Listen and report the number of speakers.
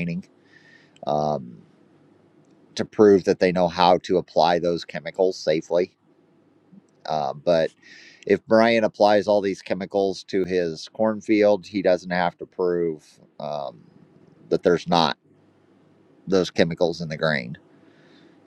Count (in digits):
1